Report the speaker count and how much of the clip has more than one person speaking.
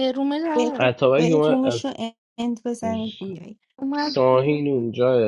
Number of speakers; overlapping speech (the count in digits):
3, about 26%